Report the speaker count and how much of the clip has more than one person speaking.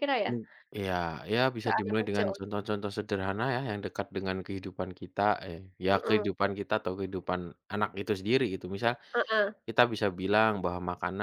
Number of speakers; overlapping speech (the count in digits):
2, about 12%